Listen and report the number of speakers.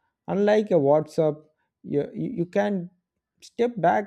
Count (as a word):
one